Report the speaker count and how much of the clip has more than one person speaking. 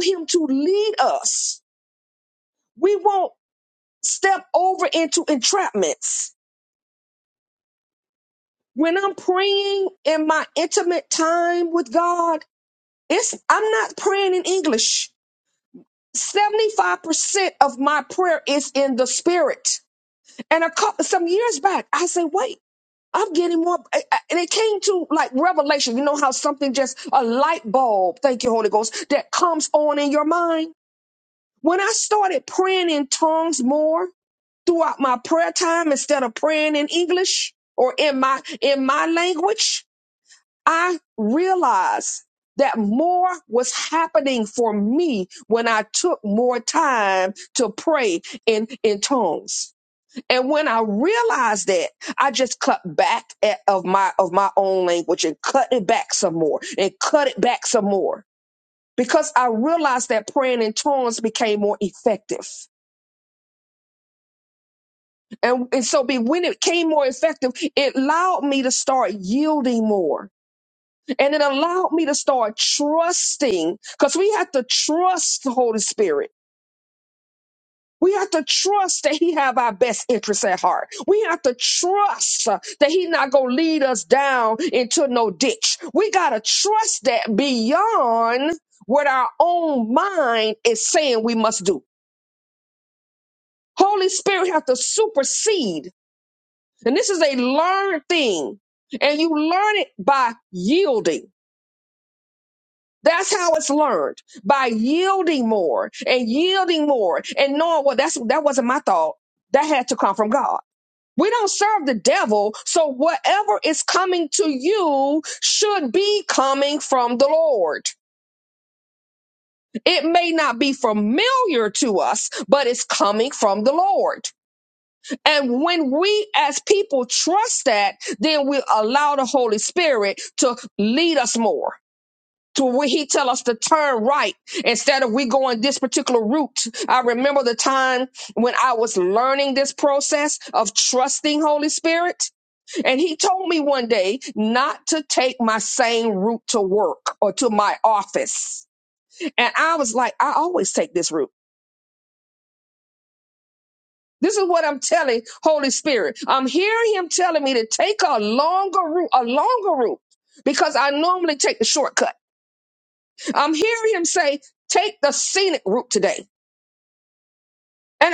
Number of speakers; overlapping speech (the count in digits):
1, no overlap